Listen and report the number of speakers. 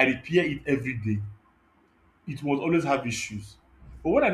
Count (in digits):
1